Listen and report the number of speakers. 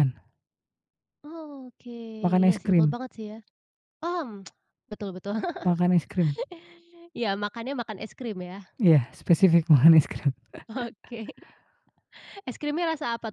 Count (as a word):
two